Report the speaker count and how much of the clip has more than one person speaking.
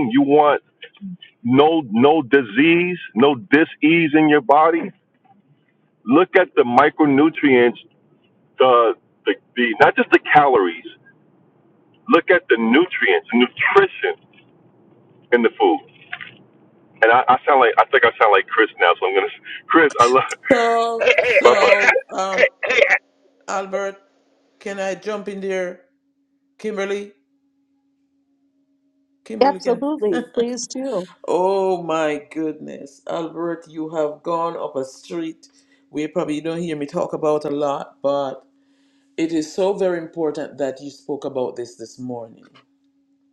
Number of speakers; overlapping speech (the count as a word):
three, about 2%